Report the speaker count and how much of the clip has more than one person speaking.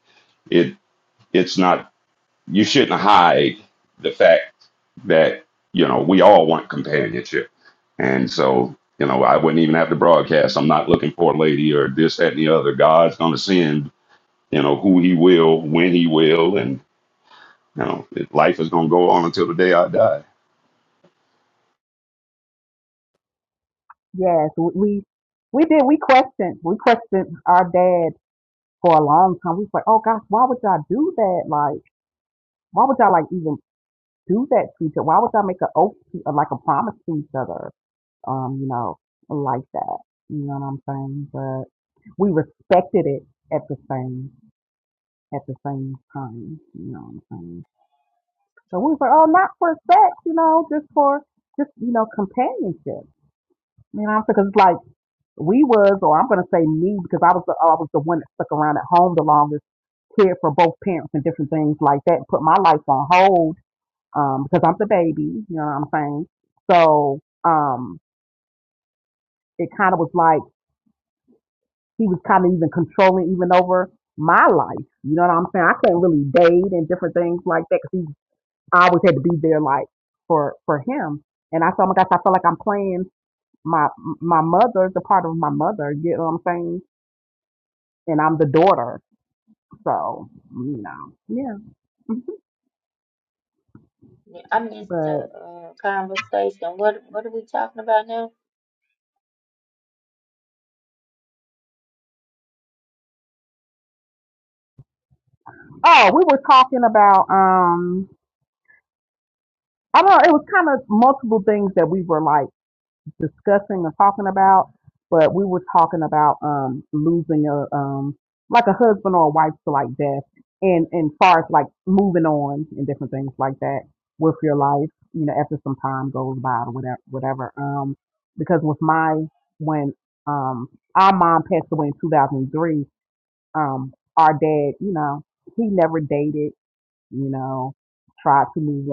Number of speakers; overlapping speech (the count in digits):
3, under 1%